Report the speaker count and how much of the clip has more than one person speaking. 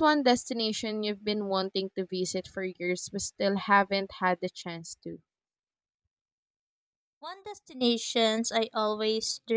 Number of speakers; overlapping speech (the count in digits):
2, no overlap